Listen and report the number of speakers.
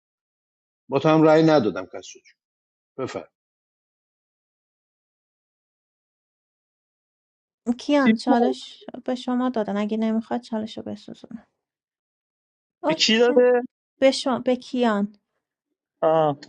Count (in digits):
3